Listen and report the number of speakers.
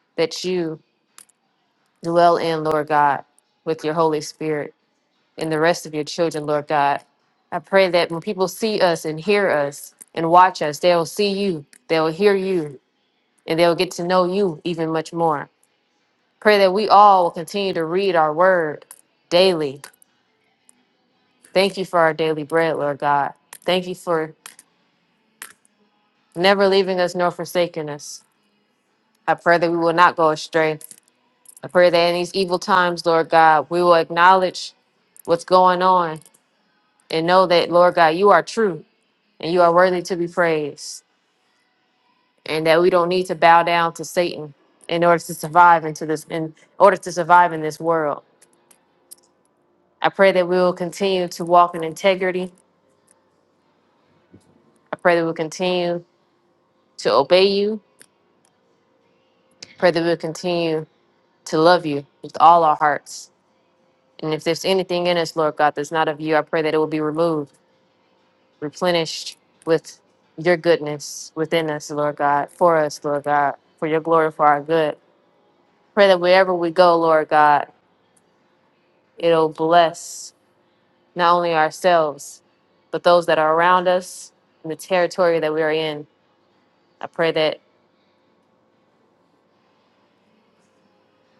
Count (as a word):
one